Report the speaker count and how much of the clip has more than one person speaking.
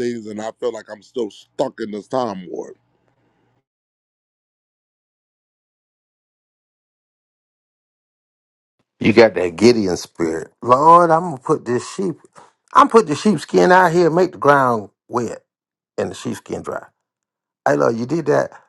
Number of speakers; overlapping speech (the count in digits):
2, no overlap